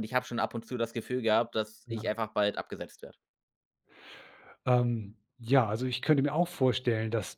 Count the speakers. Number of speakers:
2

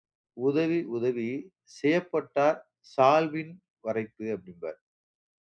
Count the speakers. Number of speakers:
1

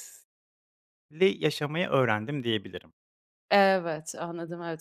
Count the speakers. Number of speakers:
2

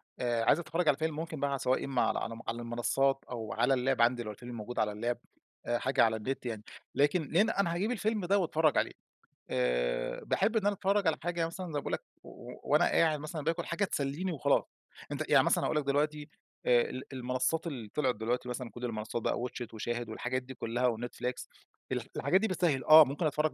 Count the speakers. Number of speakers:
1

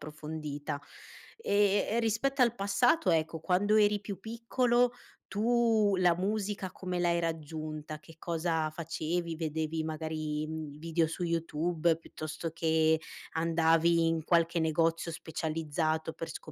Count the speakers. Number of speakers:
1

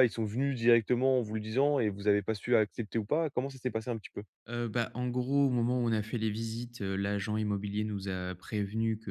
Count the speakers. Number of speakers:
2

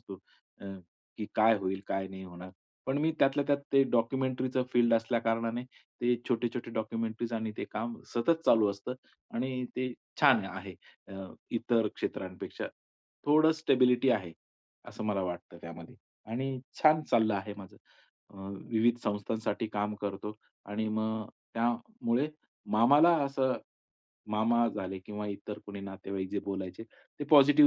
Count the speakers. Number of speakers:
1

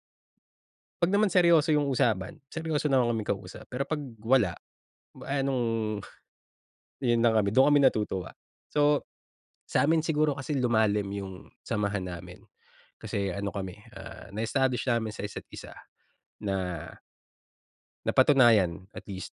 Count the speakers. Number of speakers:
1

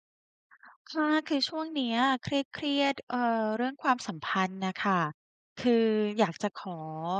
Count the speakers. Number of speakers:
1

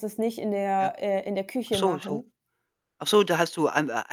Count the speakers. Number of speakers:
2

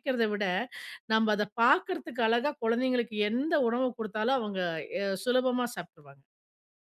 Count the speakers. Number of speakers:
1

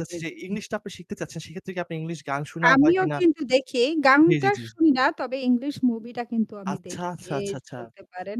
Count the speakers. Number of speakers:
2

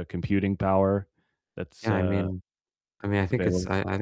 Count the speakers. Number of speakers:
2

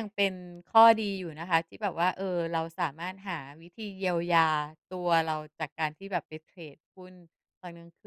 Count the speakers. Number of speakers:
1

